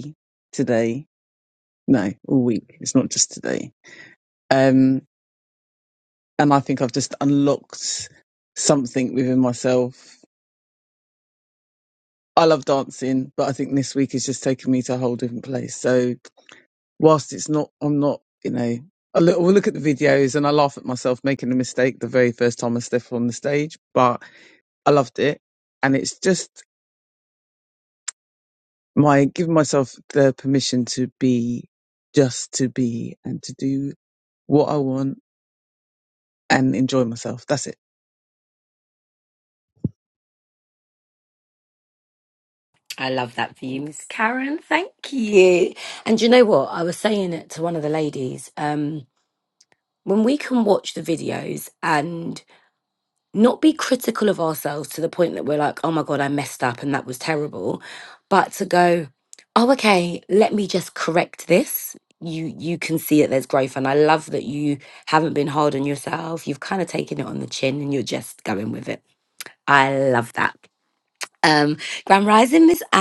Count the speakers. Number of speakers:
2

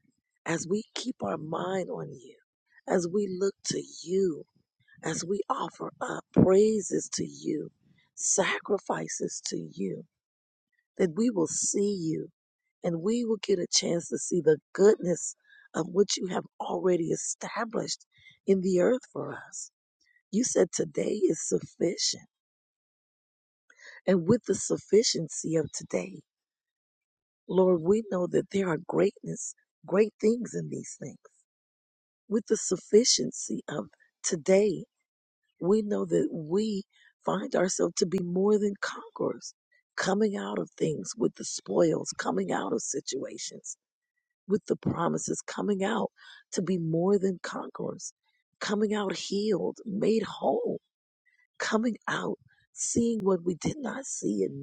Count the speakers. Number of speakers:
1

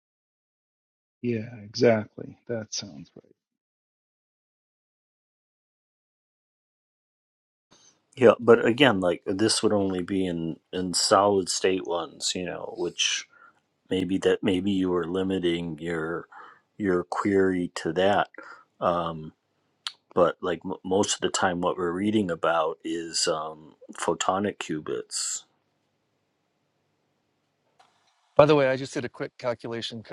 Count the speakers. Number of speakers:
3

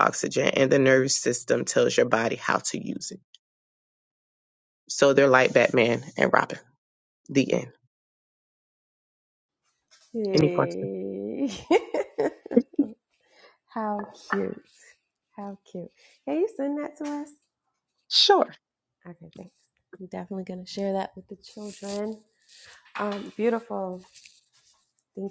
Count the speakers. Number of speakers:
2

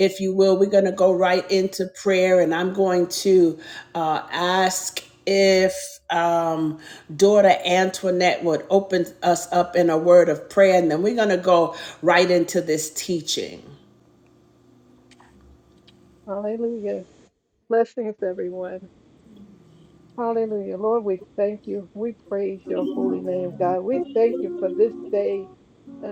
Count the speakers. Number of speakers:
2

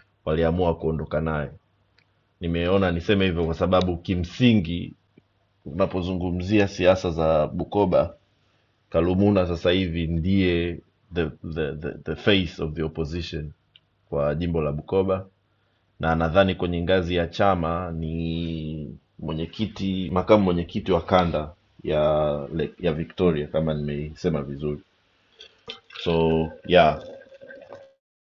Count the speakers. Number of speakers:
1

